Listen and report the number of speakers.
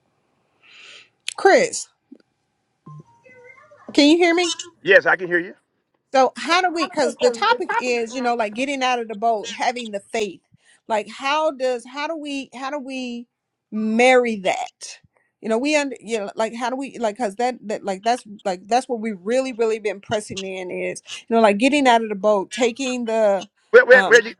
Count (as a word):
two